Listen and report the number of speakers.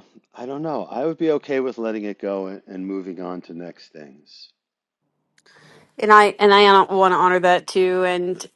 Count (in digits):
2